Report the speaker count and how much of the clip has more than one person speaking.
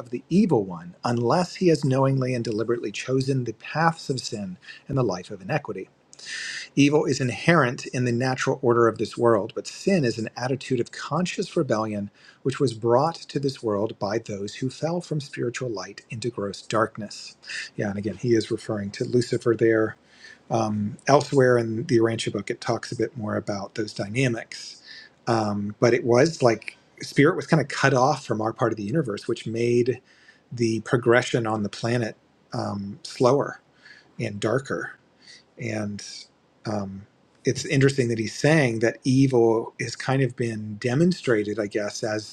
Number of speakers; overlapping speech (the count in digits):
1, no overlap